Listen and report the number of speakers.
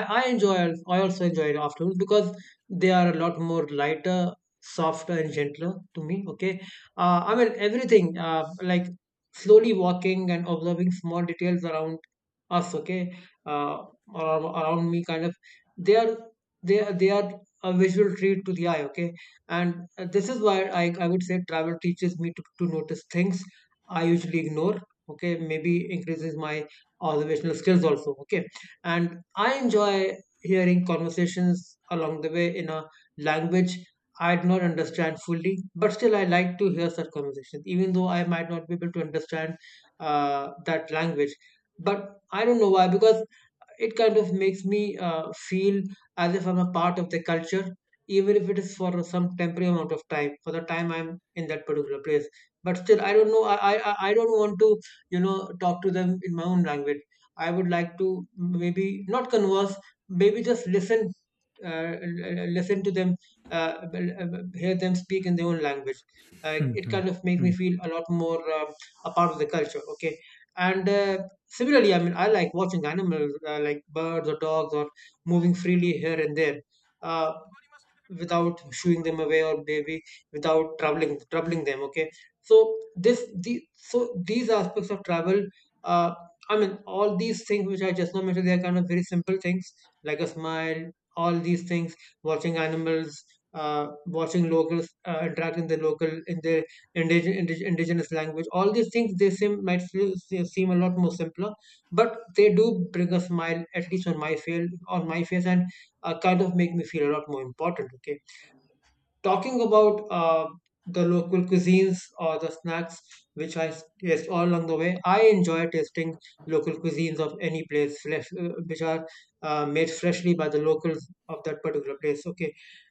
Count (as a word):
one